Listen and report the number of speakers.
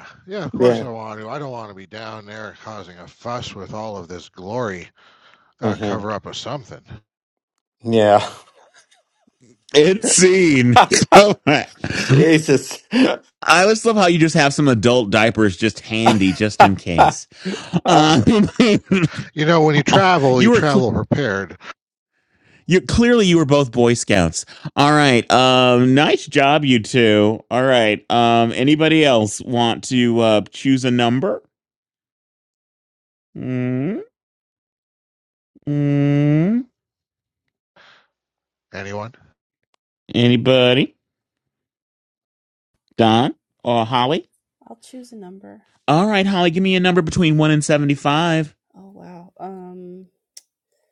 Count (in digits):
4